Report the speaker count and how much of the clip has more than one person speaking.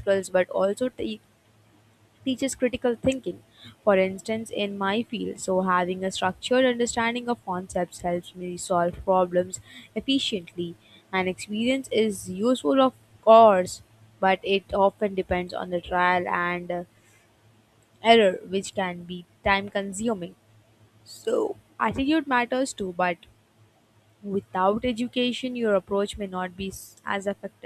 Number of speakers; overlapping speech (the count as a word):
one, no overlap